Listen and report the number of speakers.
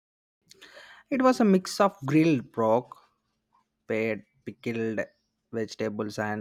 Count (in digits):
1